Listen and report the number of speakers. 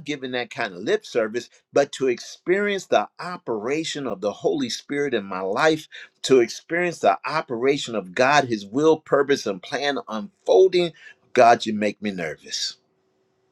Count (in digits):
1